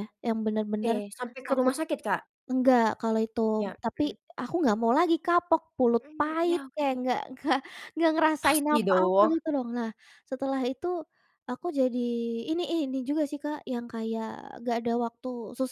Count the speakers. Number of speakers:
two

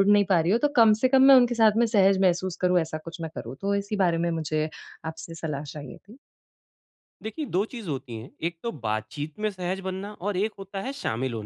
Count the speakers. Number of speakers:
two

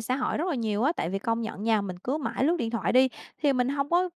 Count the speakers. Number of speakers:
one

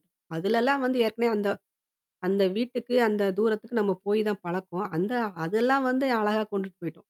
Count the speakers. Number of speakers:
one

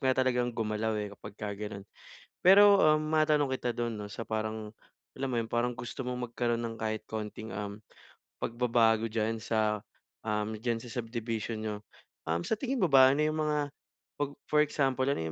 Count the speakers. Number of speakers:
one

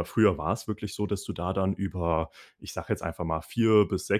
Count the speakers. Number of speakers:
one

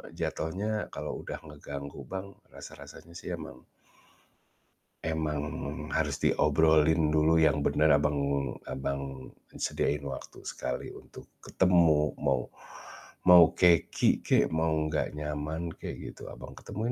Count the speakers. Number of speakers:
one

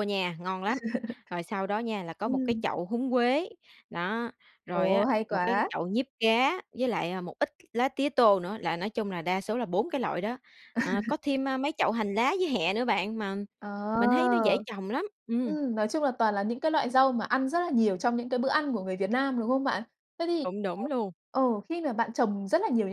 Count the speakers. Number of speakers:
two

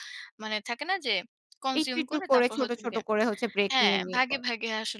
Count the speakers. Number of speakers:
two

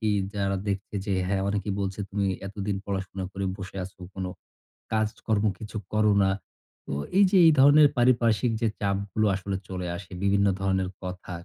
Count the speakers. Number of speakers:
one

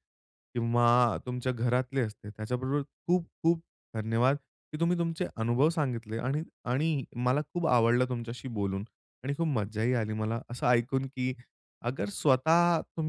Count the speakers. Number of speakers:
one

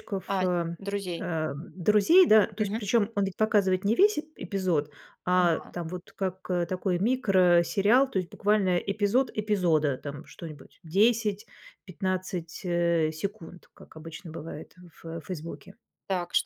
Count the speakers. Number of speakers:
two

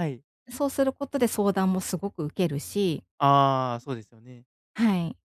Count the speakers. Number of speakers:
two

